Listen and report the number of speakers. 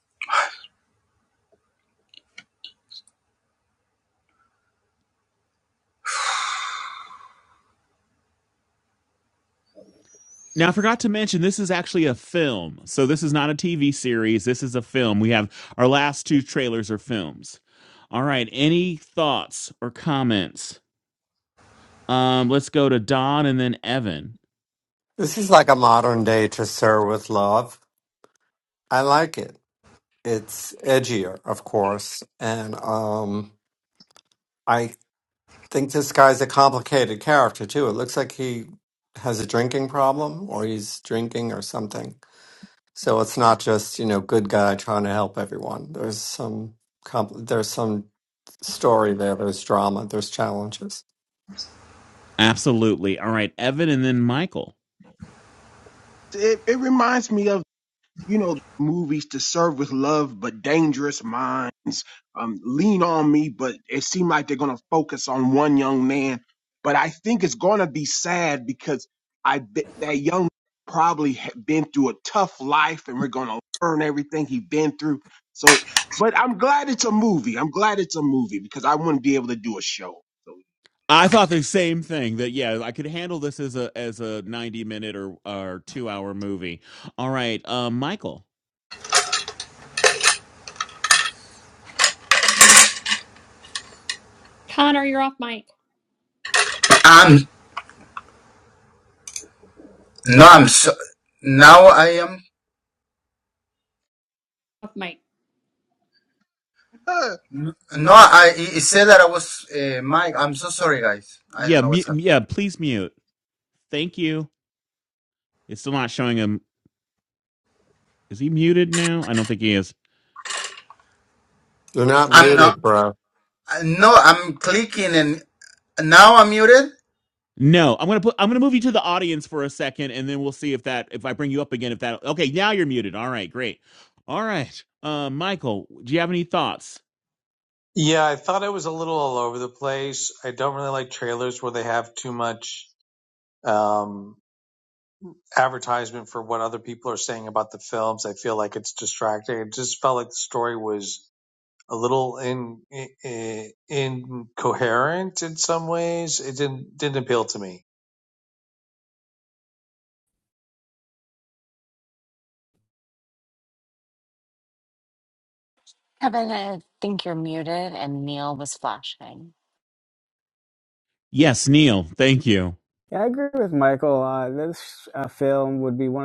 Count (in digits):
8